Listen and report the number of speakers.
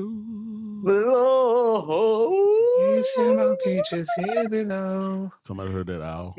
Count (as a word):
three